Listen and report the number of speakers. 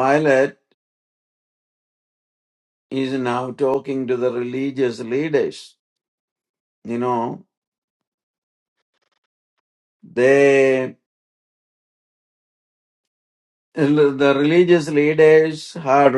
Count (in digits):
1